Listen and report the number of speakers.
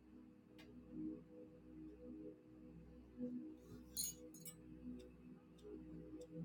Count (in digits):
0